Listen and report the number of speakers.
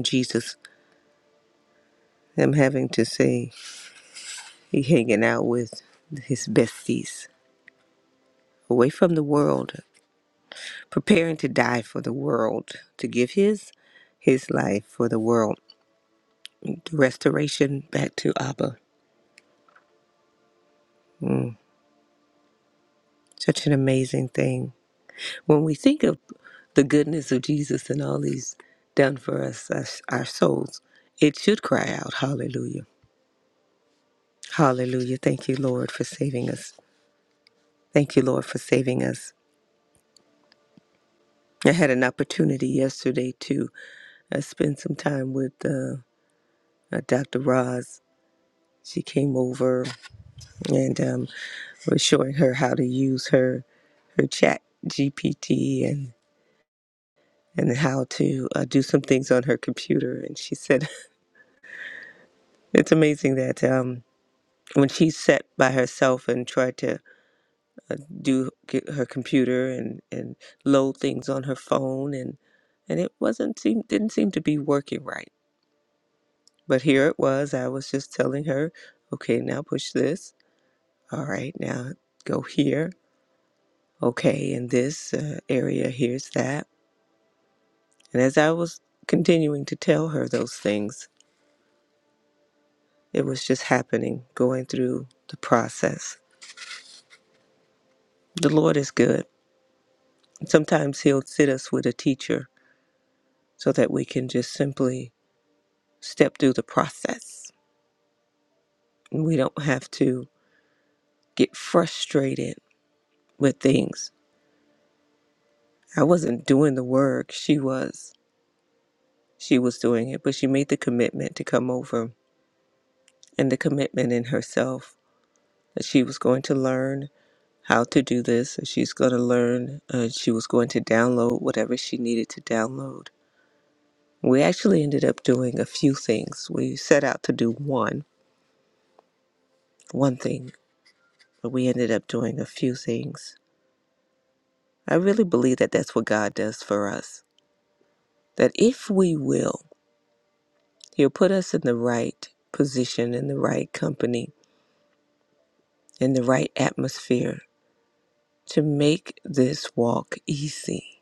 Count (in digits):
1